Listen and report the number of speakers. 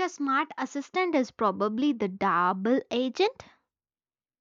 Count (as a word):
one